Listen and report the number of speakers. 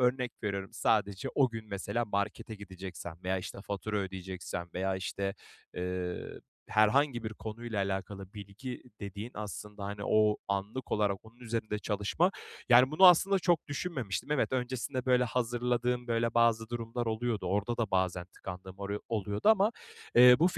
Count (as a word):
one